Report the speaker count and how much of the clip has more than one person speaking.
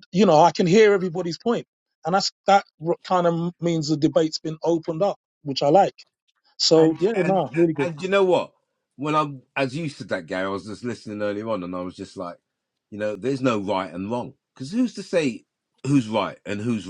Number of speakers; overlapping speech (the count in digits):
2, about 4%